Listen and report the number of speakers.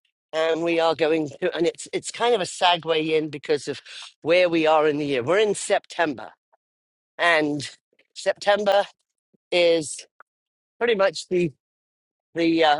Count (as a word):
one